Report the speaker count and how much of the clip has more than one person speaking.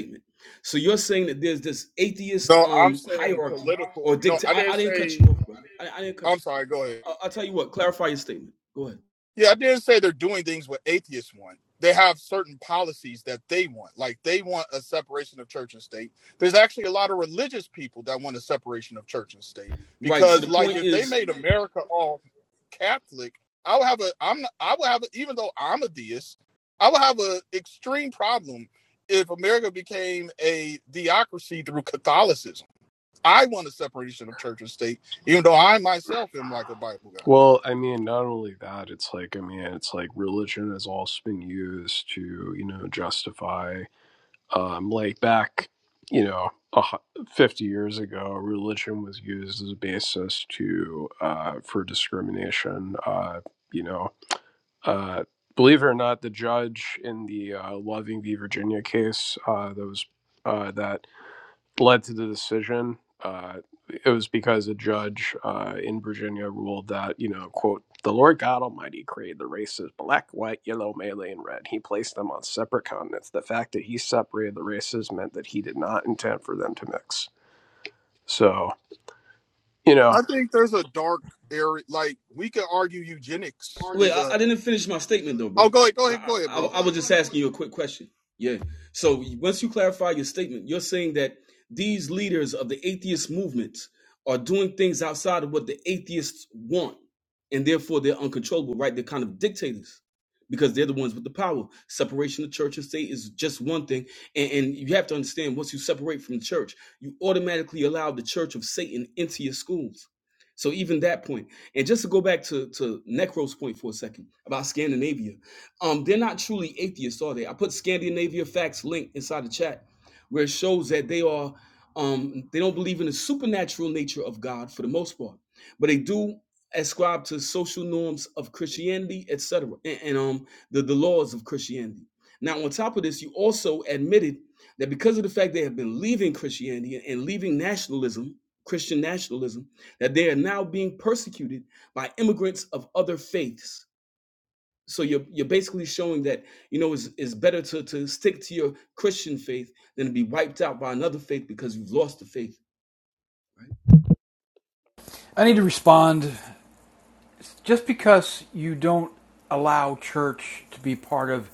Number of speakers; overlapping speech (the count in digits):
4, about 3%